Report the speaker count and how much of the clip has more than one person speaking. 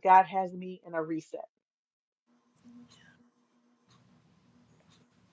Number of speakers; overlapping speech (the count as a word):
one, no overlap